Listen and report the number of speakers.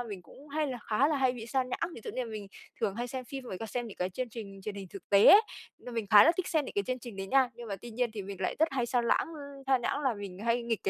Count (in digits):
1